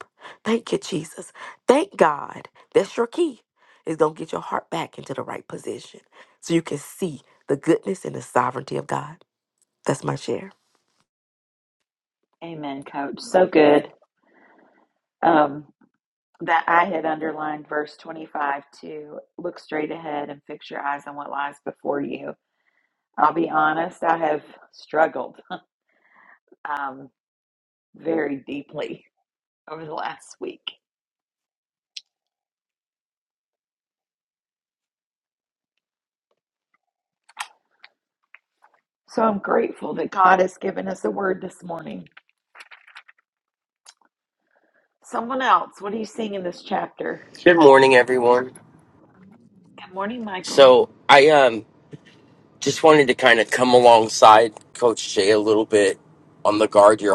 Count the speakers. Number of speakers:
3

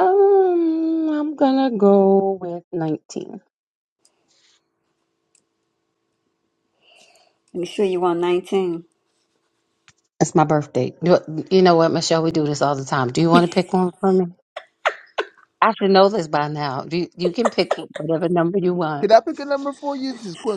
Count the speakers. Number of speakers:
3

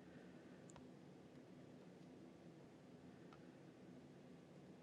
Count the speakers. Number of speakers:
0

